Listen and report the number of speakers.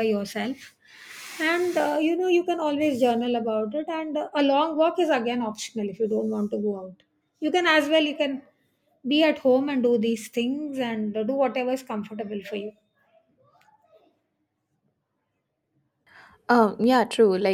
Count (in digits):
2